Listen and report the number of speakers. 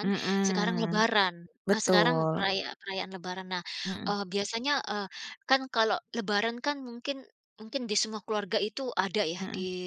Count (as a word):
two